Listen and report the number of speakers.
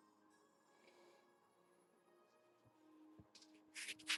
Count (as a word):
zero